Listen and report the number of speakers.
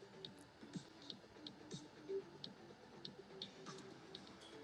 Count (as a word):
zero